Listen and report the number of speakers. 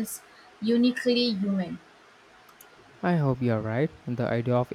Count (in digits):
2